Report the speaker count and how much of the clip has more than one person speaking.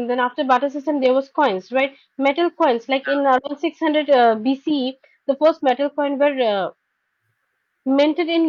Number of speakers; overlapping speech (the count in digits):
1, no overlap